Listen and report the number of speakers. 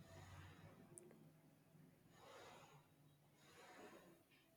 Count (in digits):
0